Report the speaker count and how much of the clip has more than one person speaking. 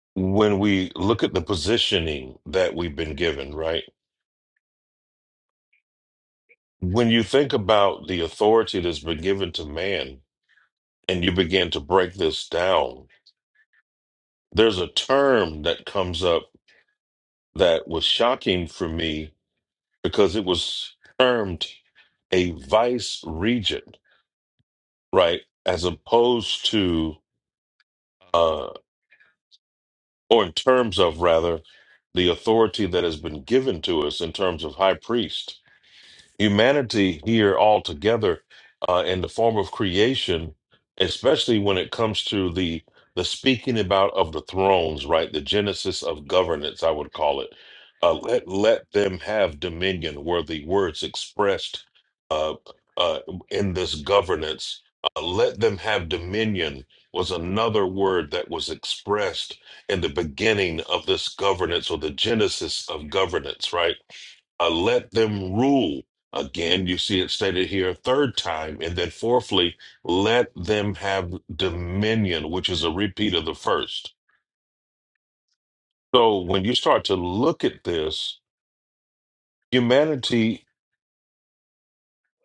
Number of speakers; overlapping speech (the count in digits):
1, no overlap